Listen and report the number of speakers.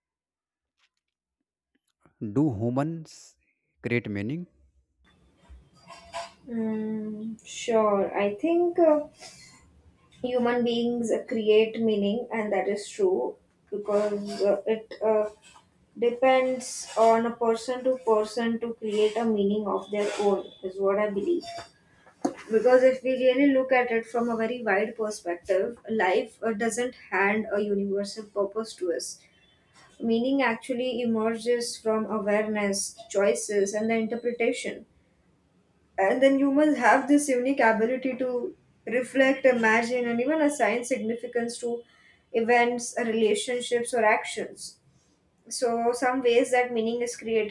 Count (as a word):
two